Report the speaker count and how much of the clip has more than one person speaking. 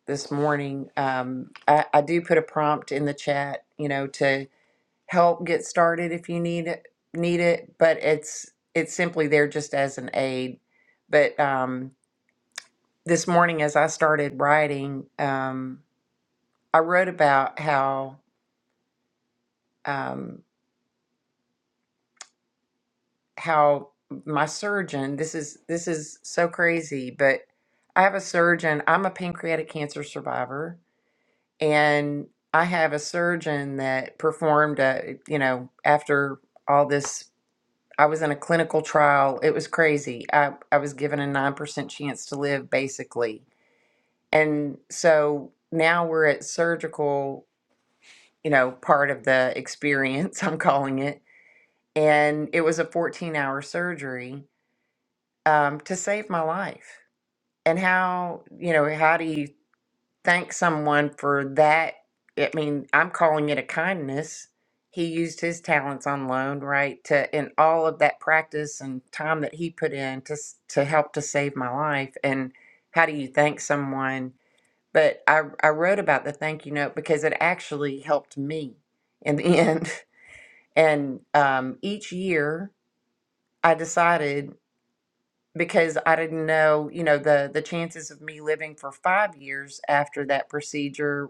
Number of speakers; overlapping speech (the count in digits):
1, no overlap